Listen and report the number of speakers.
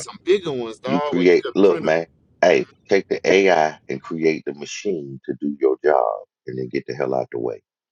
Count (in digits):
2